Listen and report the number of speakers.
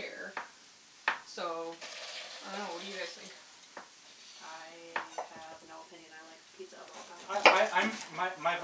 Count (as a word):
three